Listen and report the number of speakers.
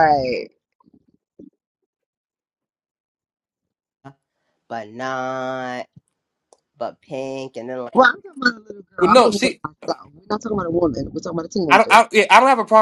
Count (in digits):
3